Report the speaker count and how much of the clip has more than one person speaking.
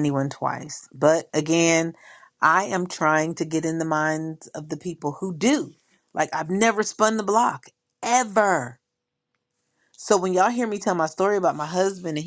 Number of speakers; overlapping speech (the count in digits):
1, no overlap